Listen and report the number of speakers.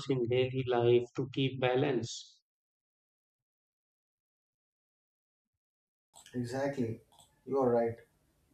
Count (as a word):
two